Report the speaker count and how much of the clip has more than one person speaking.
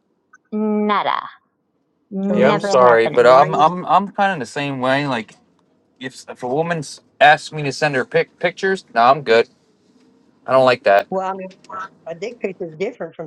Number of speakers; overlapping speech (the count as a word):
three, about 9%